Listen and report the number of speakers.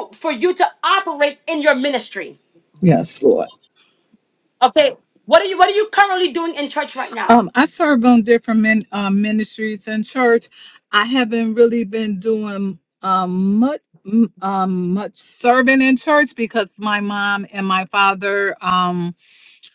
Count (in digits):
2